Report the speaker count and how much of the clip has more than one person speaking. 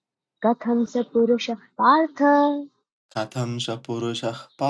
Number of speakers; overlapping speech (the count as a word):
two, no overlap